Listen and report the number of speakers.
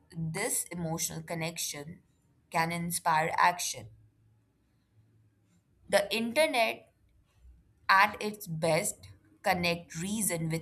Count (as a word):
one